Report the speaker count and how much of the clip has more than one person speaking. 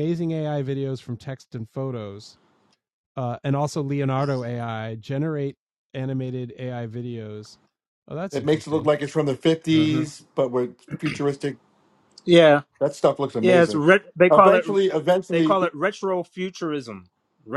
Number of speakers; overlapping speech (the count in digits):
3, about 11%